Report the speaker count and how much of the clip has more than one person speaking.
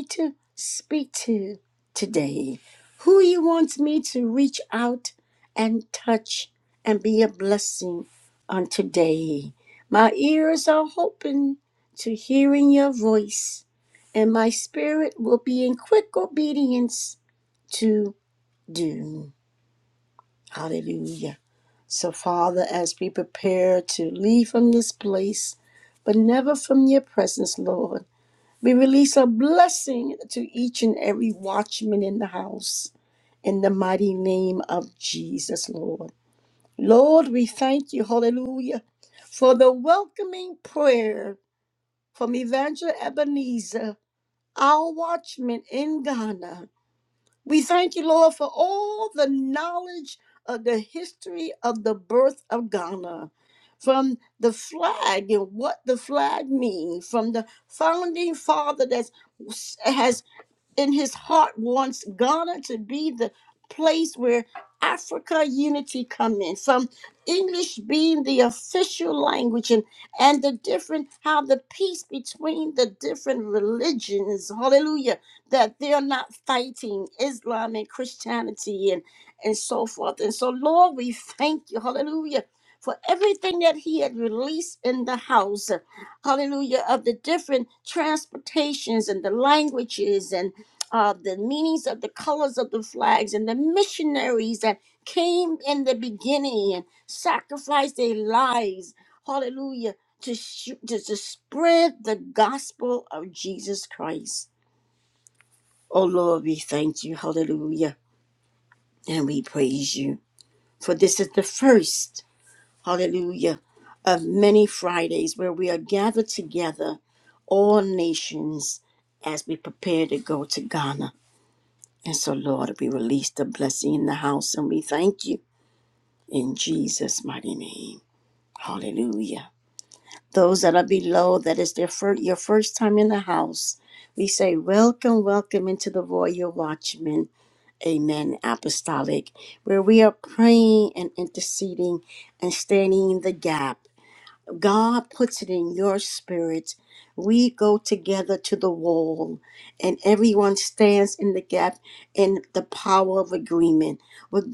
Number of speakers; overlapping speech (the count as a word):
one, no overlap